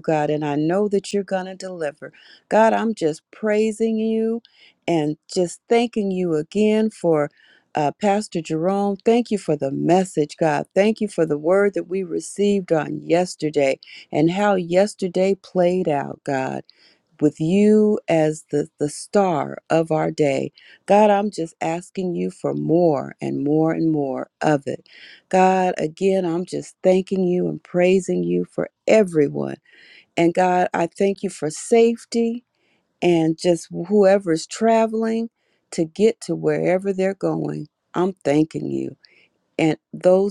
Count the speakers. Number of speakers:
one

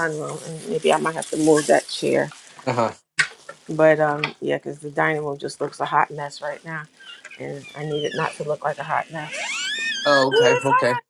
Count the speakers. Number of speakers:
two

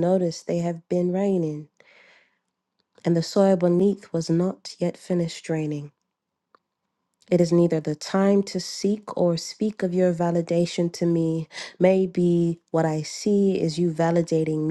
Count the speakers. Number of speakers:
one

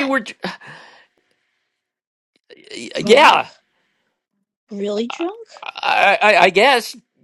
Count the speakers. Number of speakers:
two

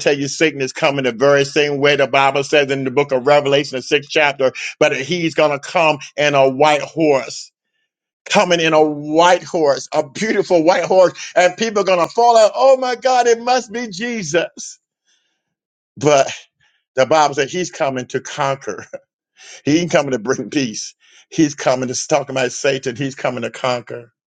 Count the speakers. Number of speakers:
one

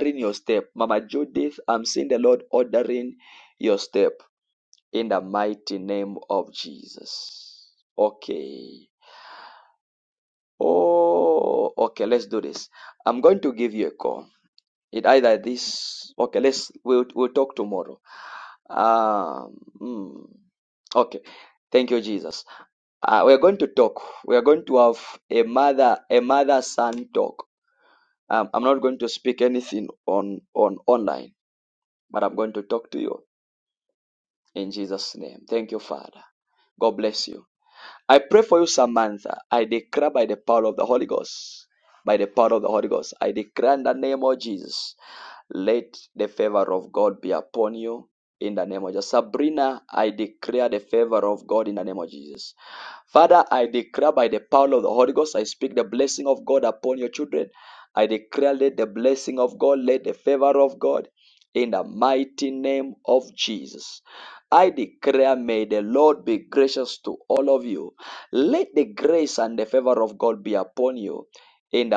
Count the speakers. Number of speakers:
one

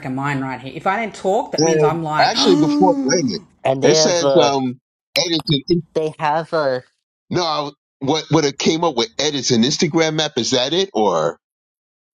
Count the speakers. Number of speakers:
three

